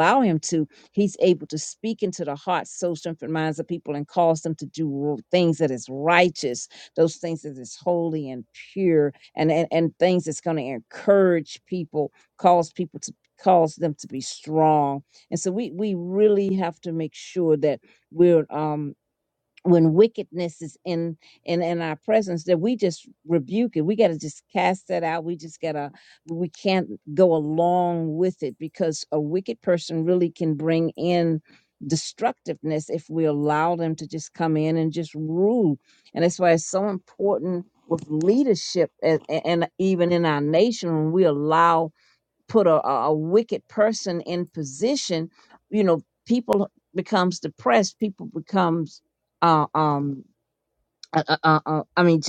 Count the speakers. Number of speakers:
one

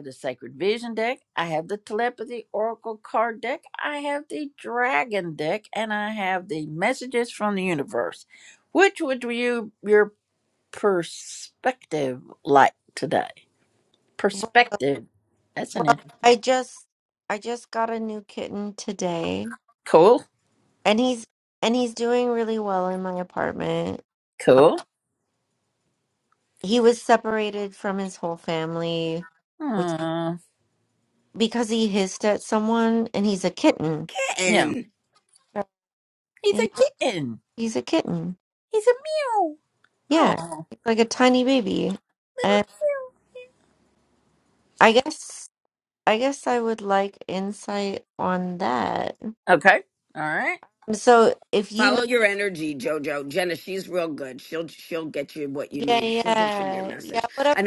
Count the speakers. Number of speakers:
three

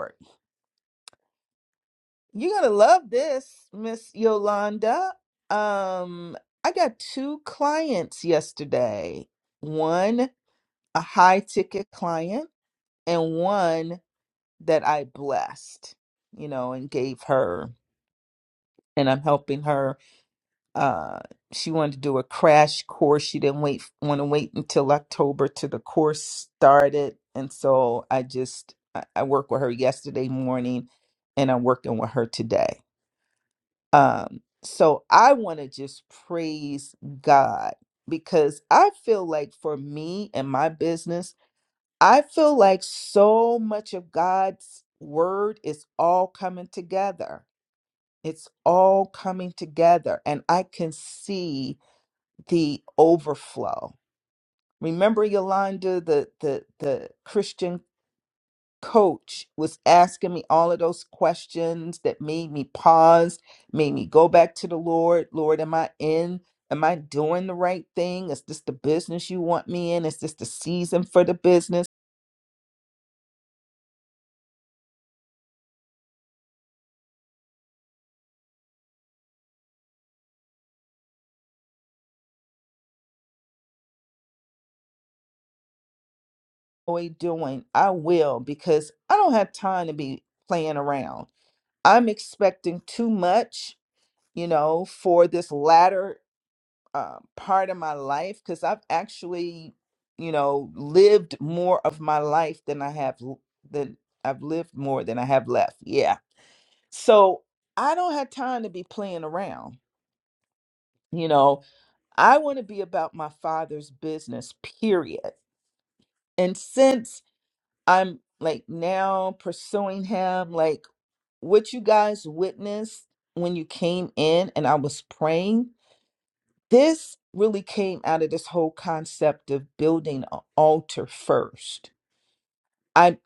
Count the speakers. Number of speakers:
one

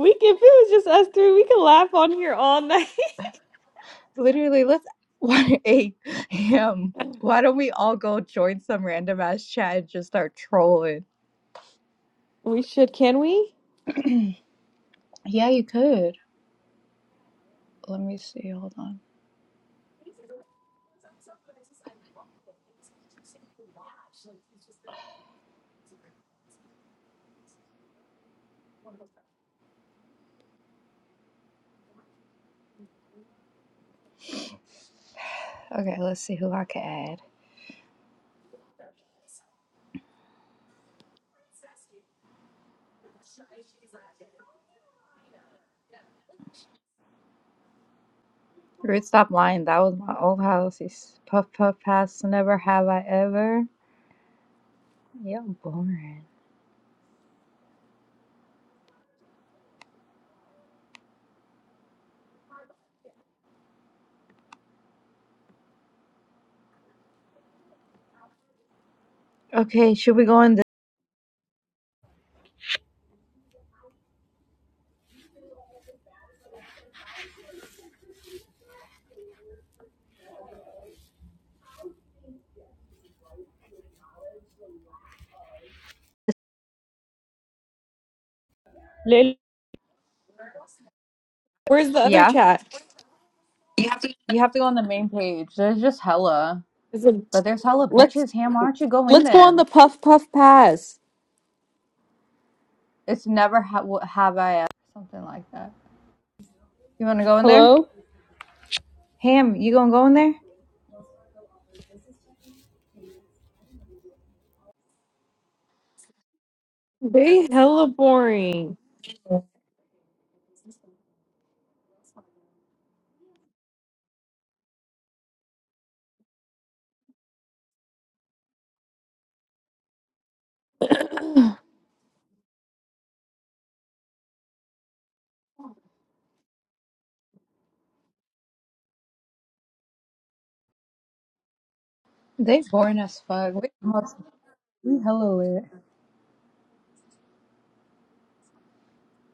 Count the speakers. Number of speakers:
two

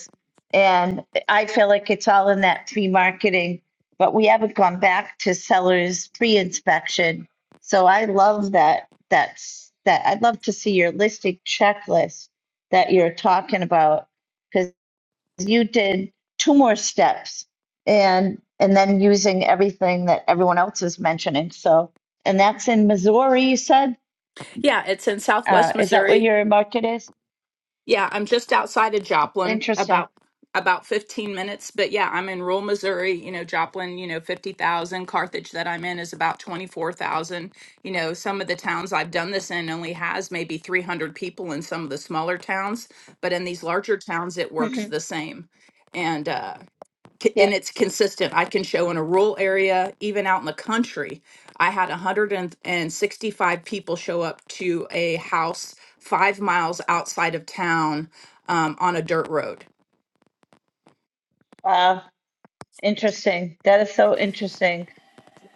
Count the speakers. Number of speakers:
two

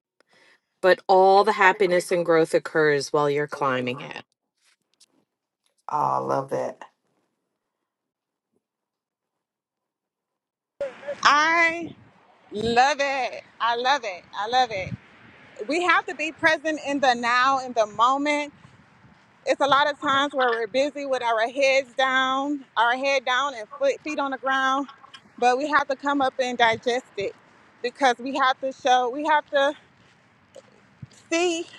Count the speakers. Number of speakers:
three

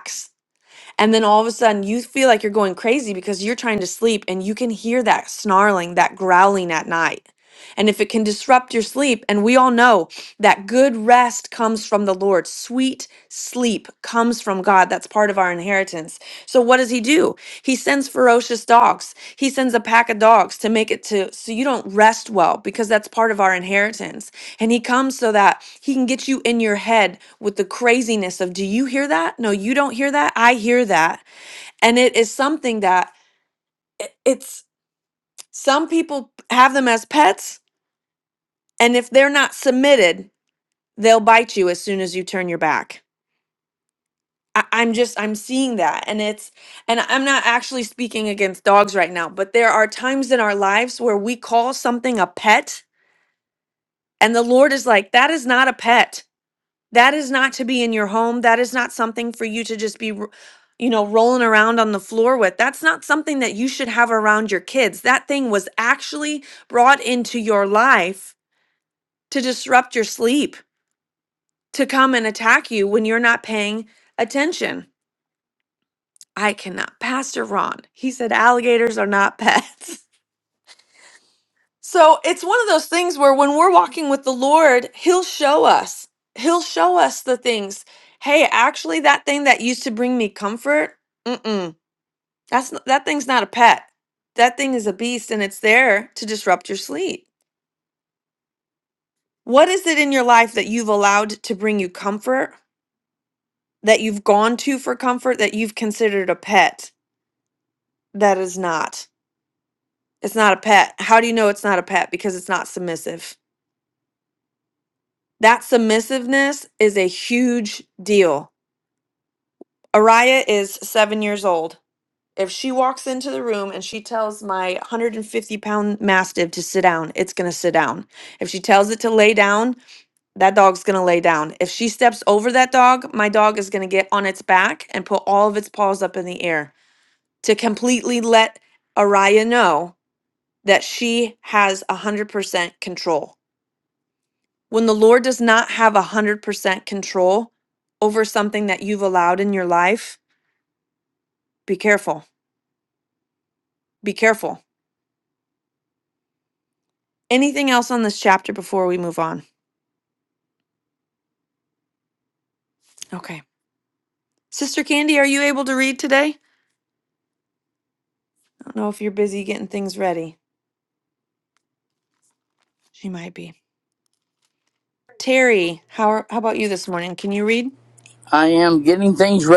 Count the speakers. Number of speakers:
two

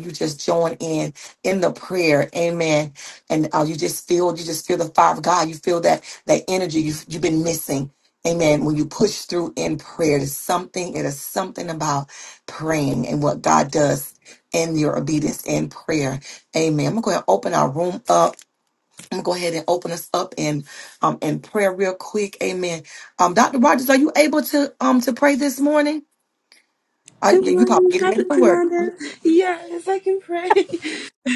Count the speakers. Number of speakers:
two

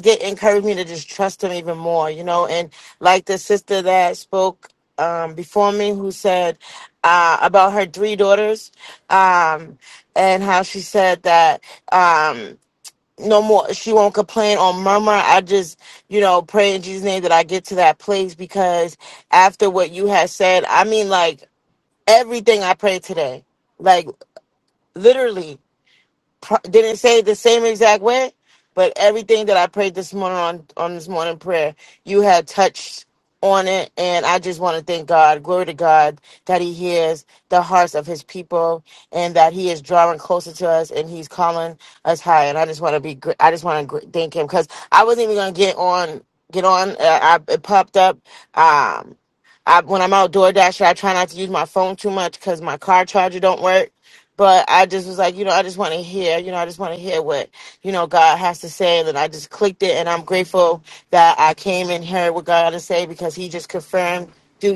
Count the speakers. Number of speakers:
one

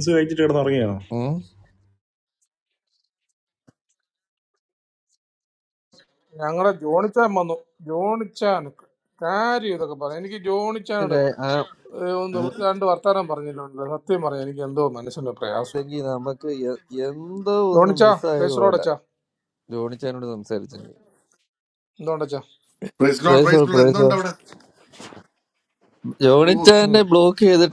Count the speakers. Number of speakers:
four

